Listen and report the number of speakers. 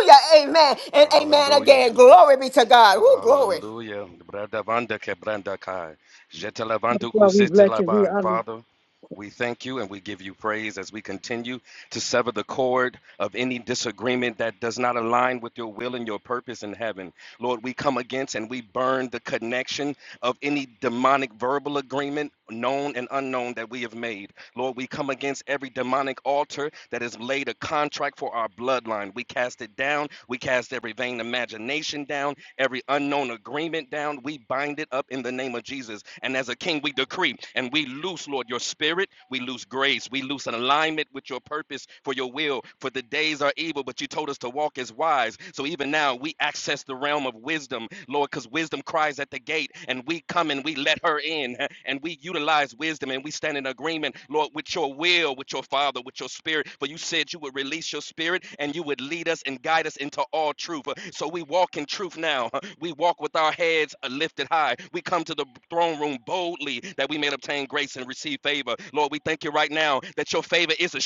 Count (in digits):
3